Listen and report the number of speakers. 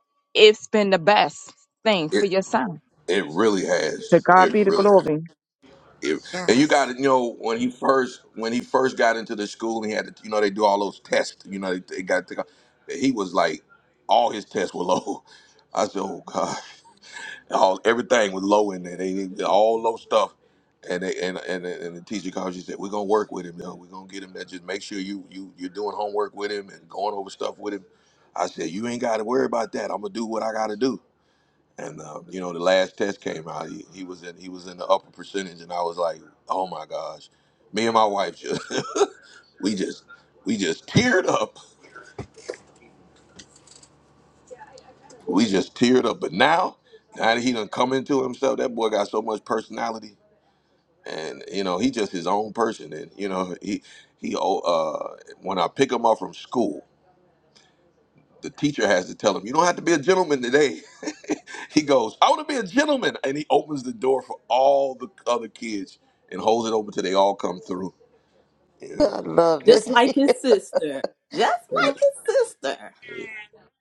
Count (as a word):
four